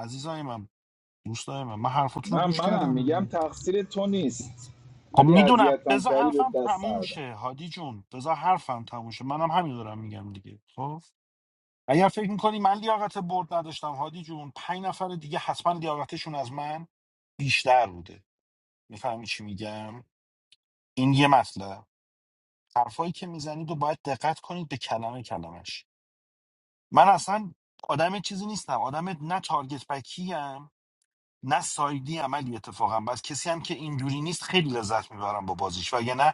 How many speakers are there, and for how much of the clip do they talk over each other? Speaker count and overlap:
2, about 8%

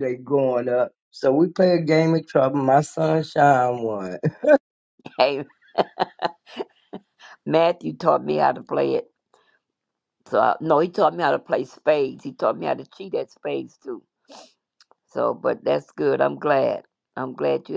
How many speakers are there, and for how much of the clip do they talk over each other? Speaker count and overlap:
2, no overlap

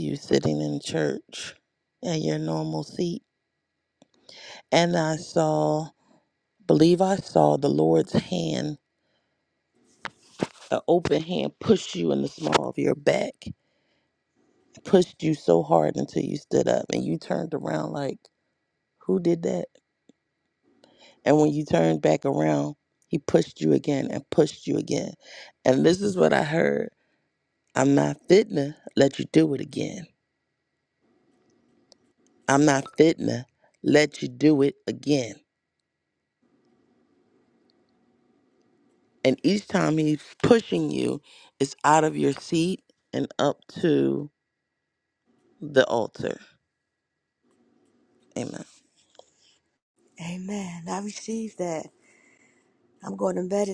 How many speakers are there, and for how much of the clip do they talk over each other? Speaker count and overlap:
2, no overlap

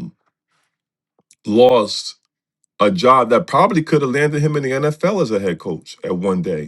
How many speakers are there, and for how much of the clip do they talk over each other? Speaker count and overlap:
1, no overlap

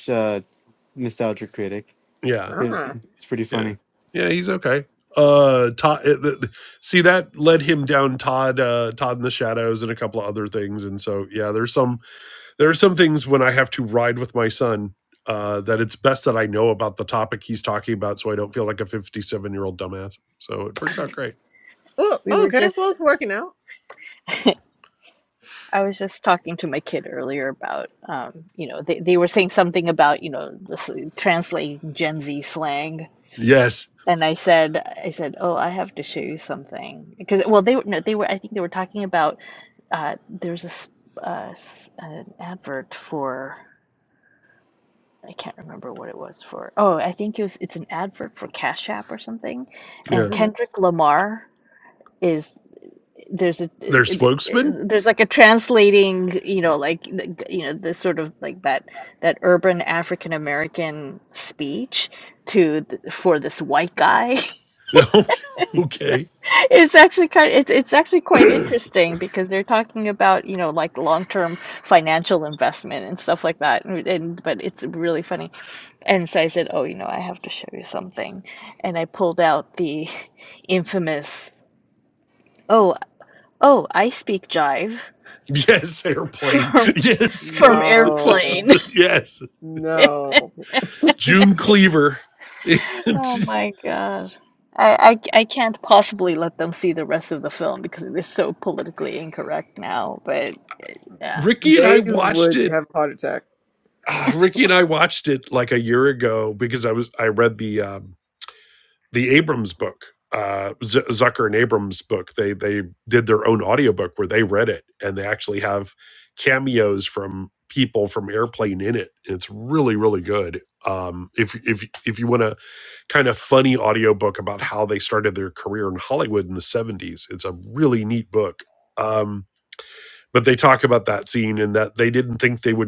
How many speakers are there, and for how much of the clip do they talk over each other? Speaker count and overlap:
4, about 4%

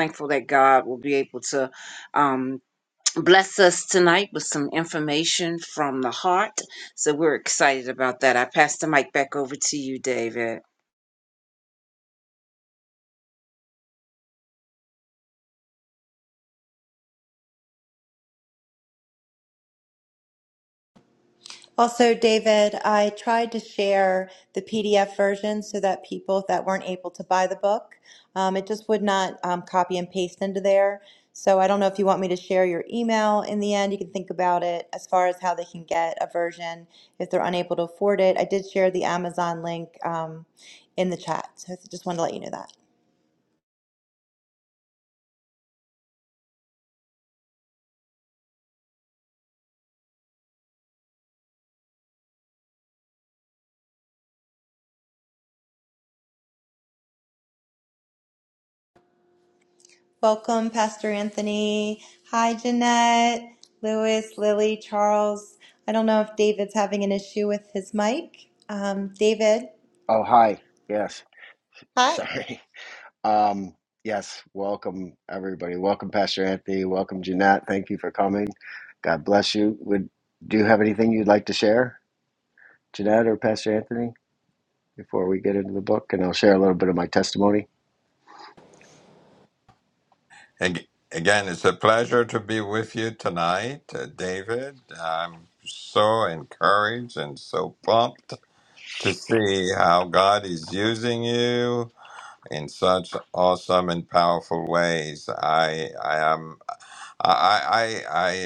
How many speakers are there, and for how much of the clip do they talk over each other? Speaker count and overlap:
4, under 1%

